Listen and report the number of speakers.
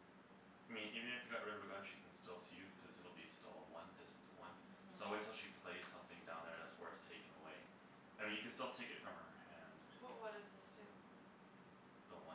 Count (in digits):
2